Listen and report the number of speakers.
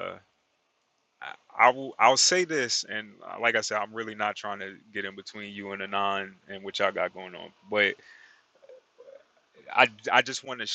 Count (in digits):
1